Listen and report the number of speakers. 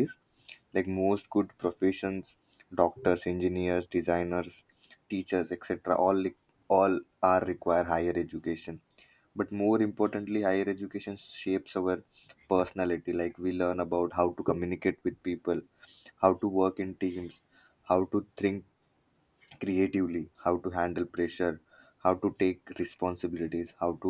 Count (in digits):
1